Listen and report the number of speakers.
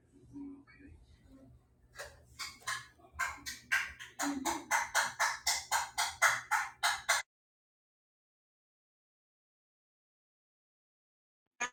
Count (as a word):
zero